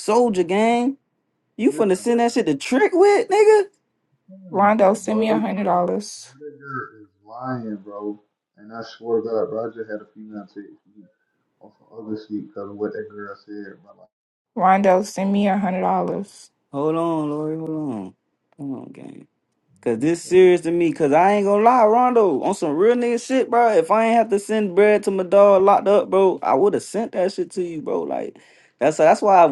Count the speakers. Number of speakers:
three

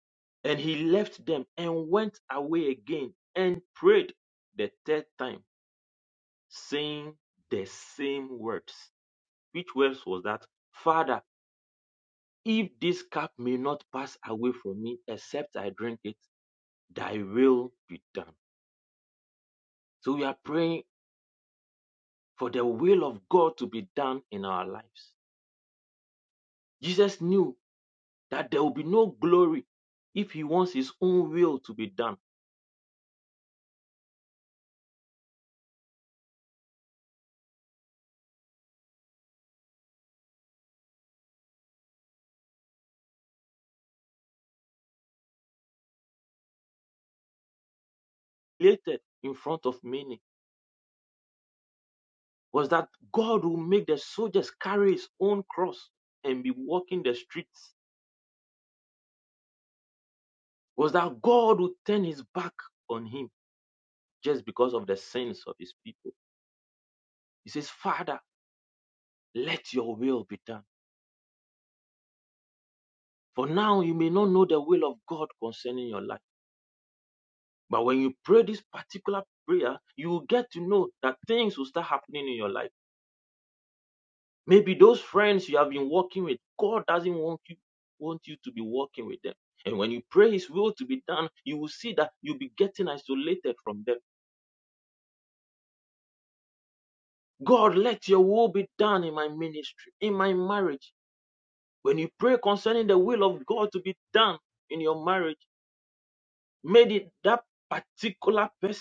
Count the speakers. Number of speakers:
one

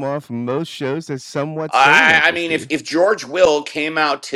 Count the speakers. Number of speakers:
two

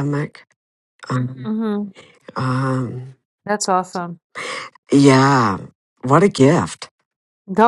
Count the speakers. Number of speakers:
two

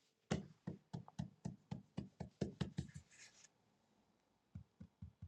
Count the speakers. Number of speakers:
zero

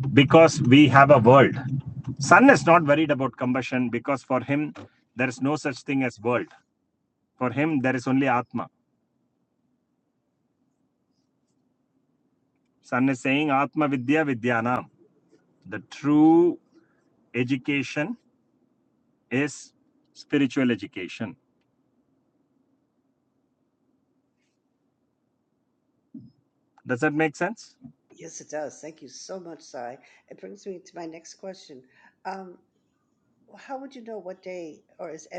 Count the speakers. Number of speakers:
two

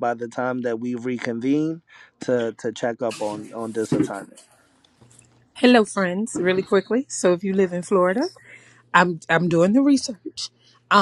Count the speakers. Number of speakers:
two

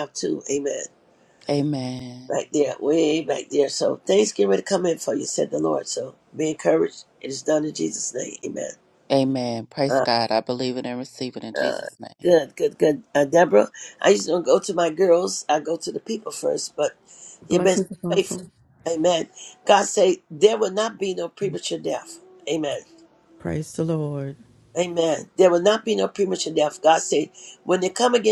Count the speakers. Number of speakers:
three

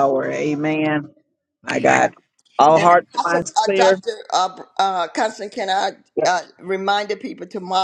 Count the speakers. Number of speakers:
two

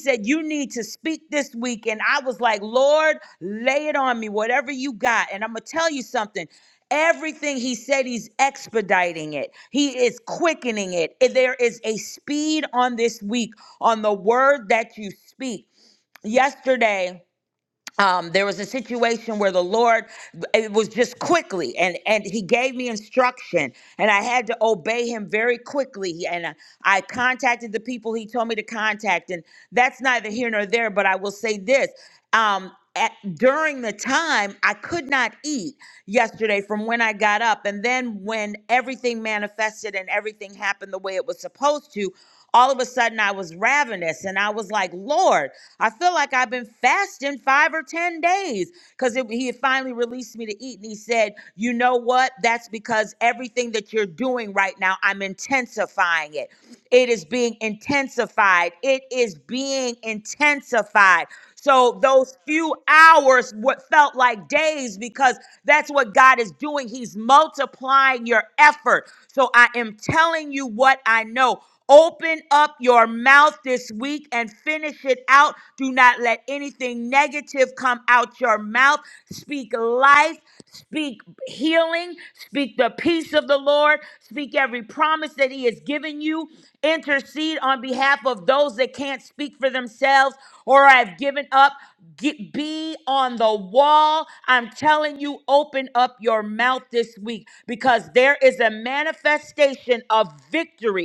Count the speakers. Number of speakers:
one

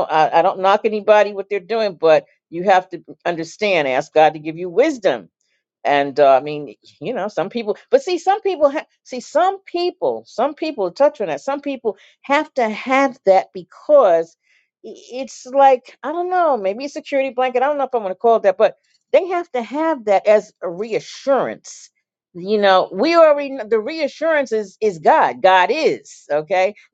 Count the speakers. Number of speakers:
one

